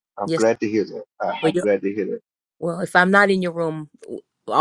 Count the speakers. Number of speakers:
2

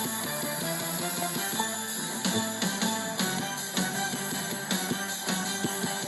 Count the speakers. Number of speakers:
0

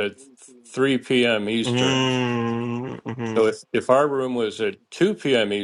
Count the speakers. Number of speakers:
2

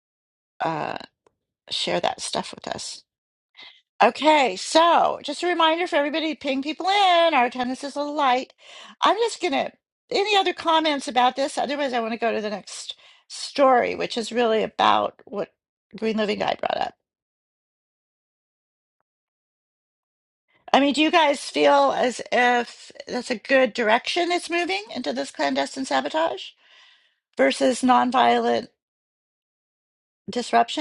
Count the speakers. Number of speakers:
1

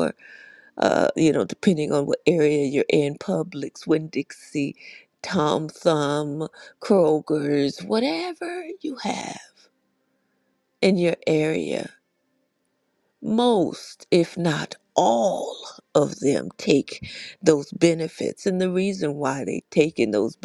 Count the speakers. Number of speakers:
1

